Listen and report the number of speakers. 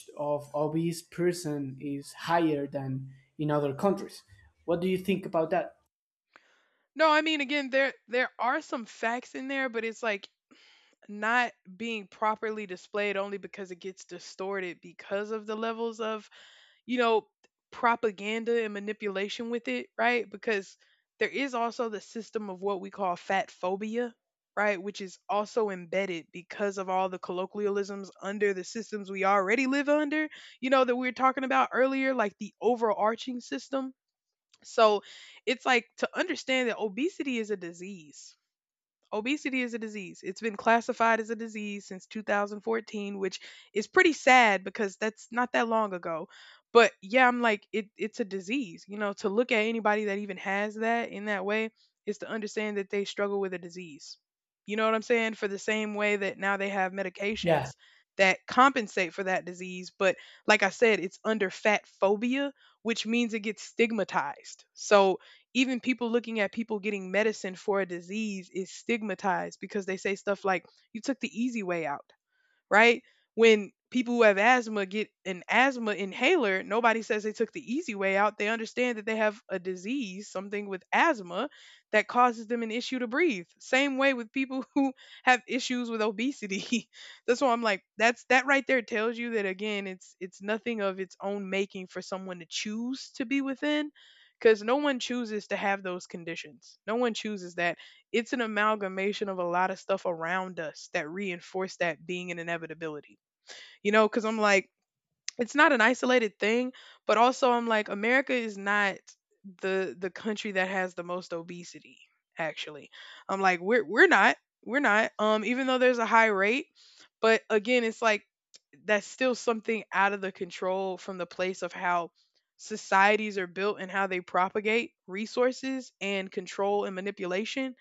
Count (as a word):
two